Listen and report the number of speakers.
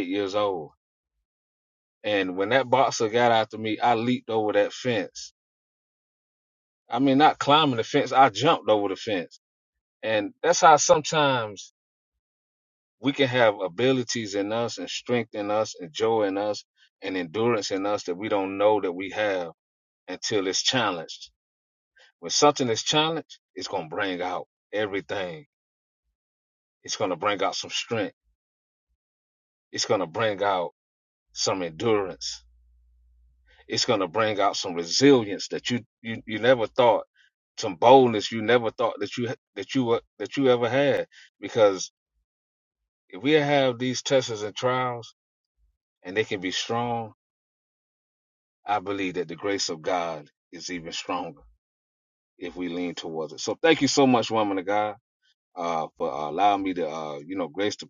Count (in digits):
1